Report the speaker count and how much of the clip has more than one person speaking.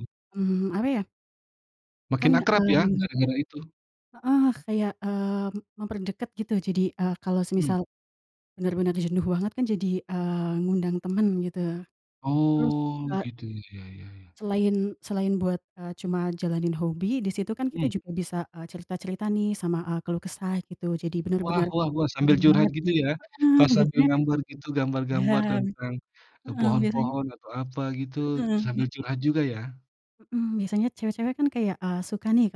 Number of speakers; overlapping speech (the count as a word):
two, about 13%